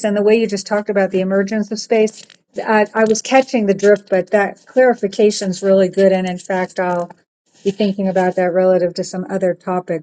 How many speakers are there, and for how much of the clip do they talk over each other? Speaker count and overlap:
one, no overlap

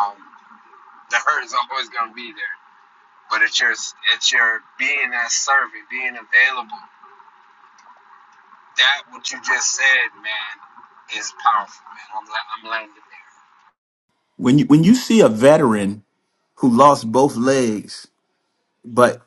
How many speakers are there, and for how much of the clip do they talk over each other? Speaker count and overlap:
two, no overlap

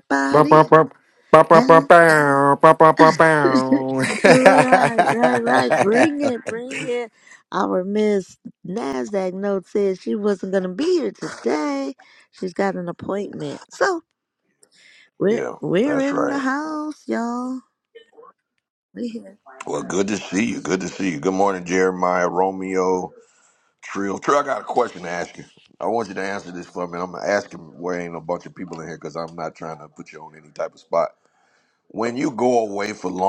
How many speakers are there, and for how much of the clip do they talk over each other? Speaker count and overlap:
three, about 6%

